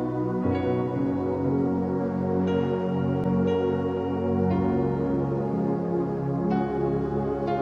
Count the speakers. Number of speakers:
0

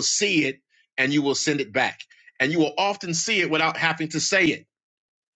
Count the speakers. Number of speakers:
1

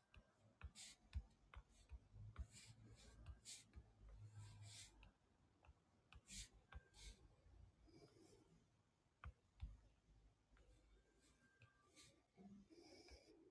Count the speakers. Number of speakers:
0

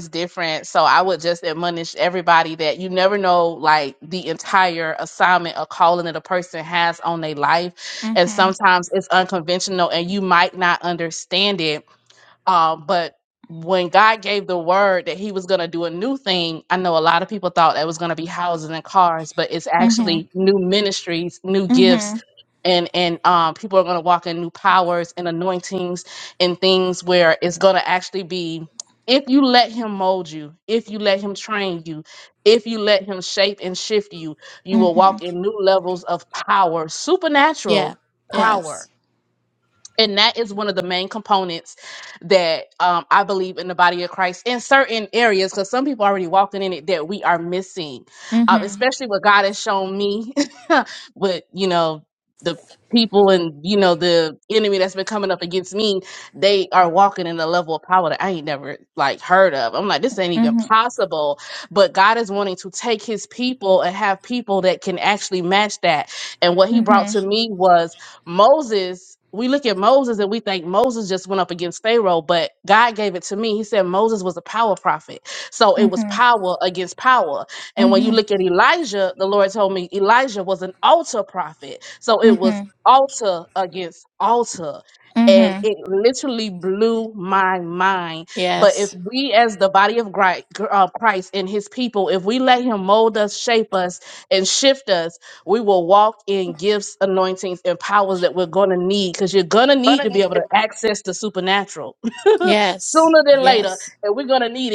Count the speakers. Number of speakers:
2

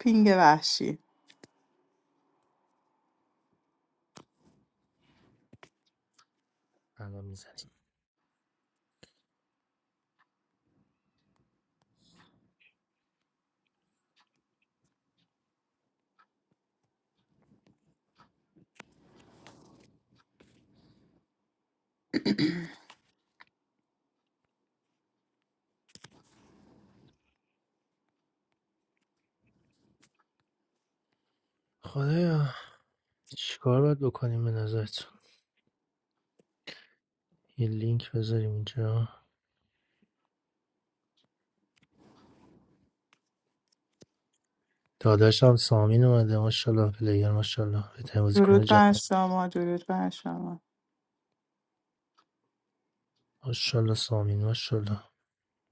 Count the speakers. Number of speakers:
2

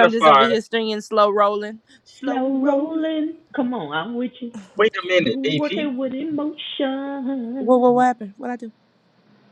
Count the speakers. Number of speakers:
3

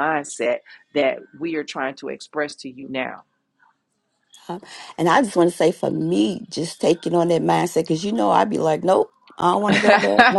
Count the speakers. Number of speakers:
2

